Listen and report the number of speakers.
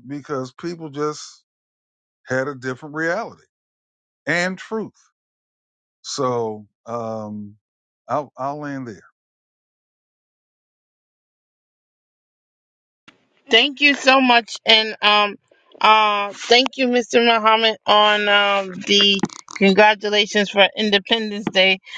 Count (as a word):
two